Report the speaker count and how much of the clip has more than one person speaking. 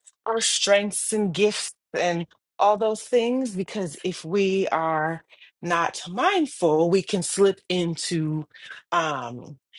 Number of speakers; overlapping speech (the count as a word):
one, no overlap